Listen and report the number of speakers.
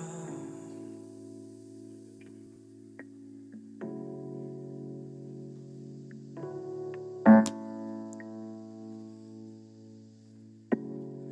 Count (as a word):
zero